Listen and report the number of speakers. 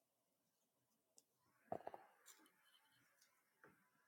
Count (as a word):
zero